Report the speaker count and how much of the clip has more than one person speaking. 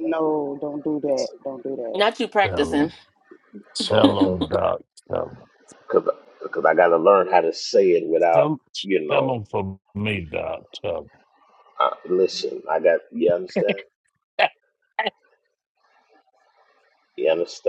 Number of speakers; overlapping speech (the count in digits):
3, about 5%